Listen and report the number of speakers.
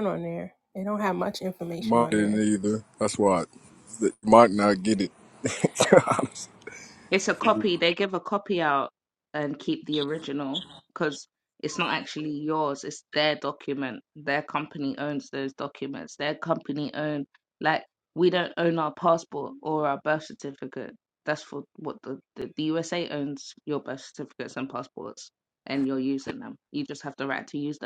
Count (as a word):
three